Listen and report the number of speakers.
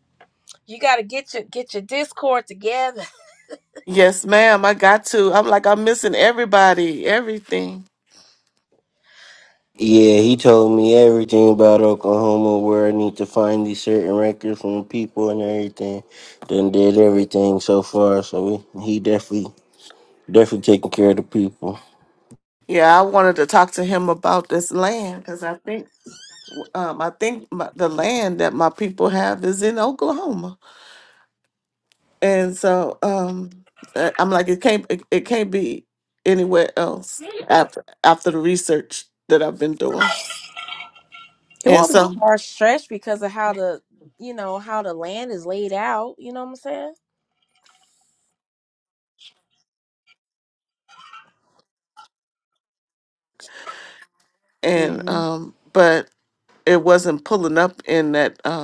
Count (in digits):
3